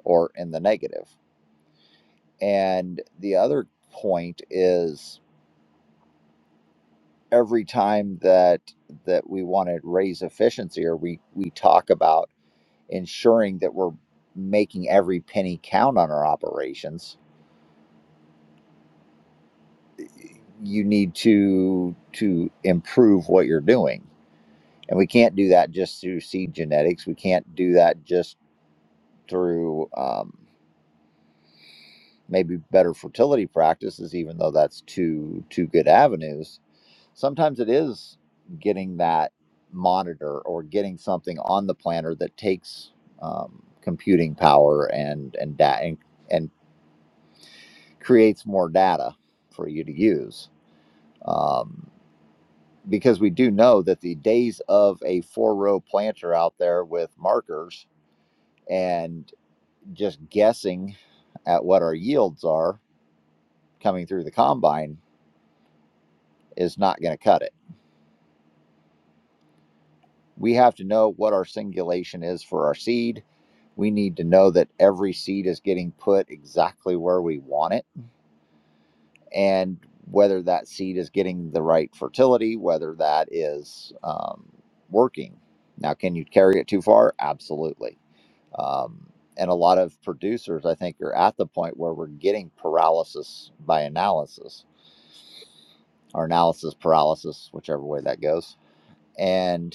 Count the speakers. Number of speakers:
1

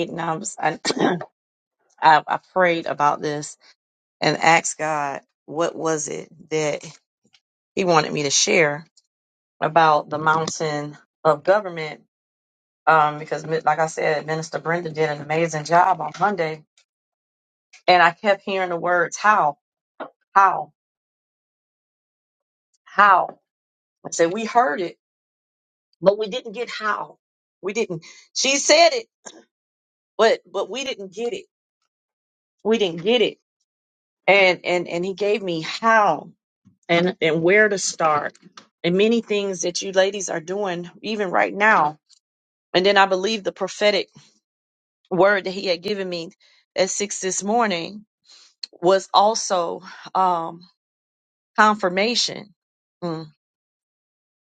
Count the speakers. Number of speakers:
1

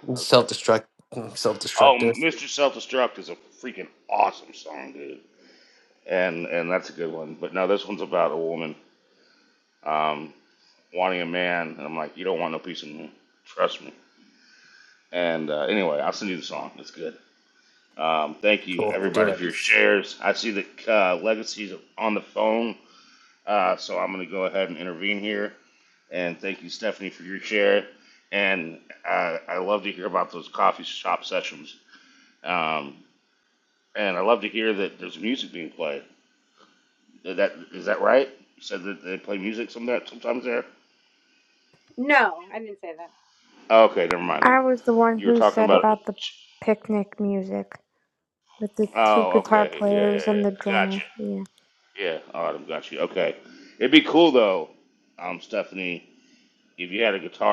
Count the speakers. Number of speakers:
4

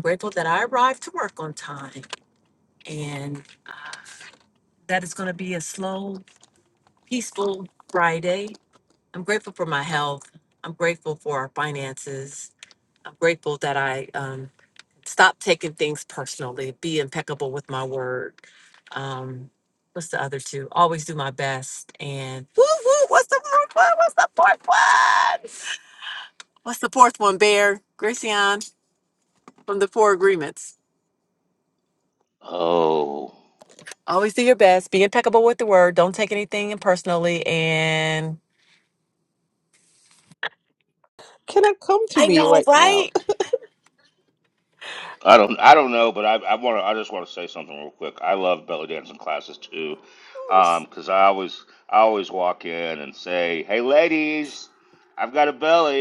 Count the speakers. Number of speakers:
3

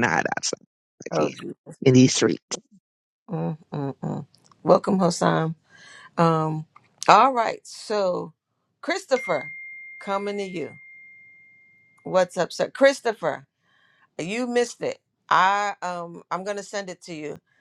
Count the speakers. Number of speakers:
2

